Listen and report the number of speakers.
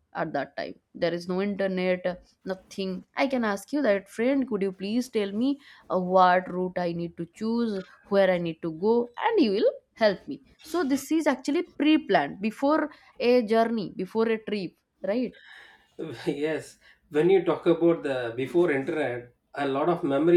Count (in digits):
2